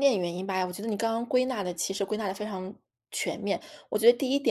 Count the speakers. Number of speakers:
one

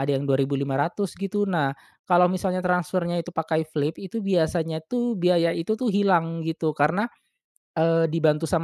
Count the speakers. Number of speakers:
one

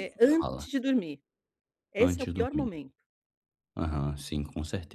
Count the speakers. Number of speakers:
two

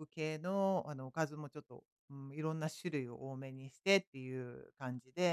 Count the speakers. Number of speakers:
one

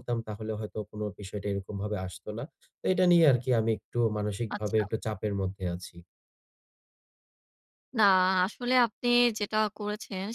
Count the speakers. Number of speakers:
two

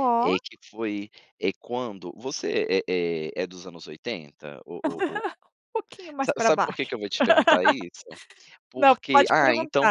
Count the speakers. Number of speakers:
two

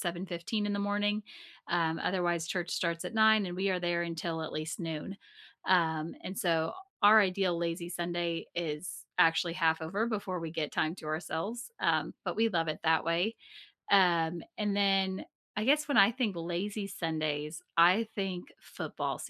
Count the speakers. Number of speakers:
one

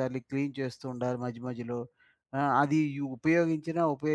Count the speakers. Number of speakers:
one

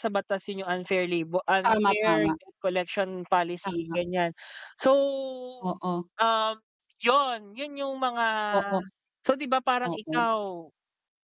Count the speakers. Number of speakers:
two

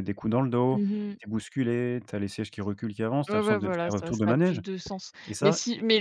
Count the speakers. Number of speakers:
two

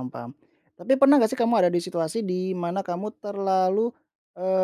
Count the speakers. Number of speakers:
one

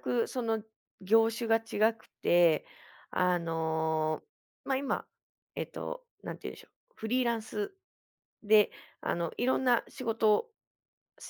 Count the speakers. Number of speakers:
one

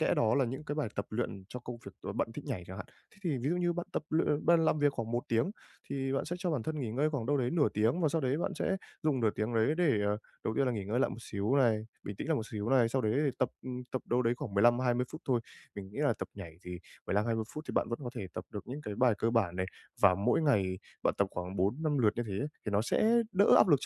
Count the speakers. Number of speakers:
one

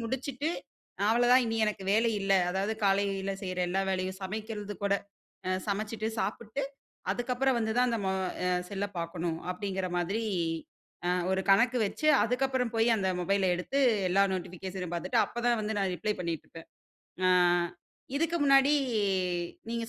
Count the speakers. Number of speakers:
one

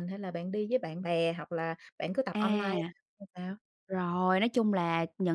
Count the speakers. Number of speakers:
two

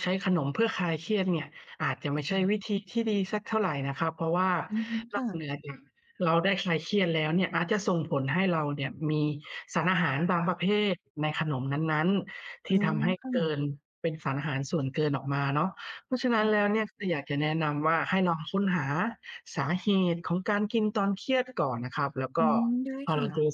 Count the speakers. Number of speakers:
two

